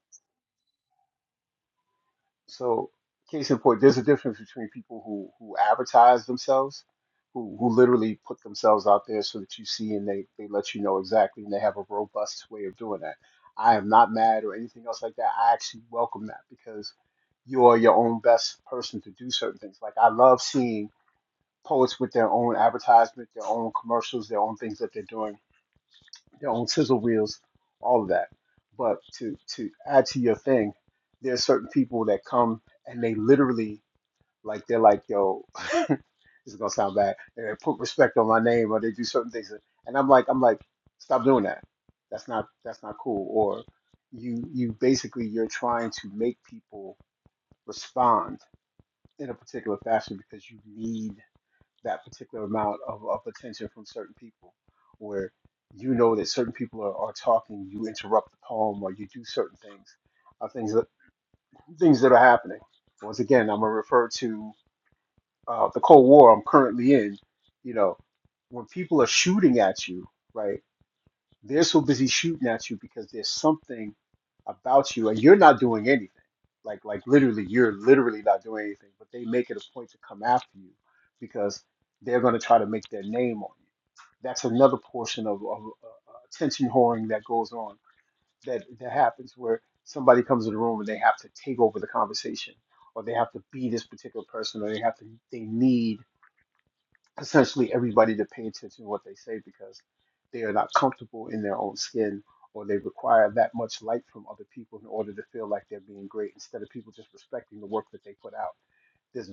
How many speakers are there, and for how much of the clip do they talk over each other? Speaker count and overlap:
one, no overlap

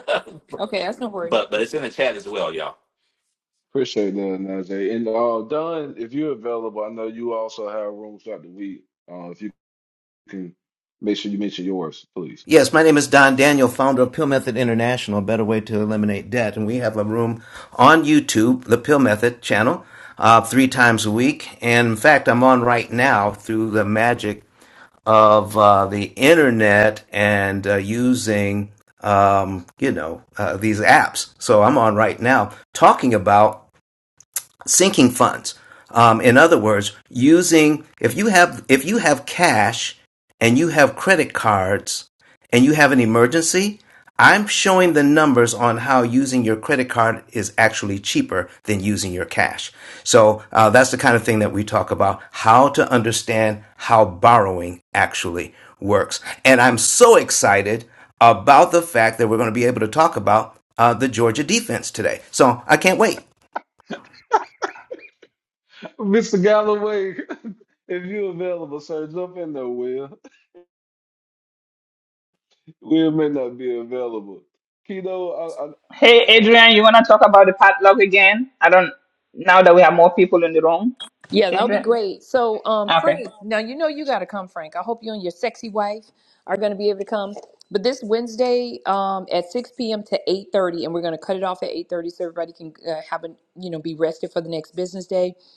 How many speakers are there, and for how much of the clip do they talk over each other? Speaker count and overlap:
five, about 1%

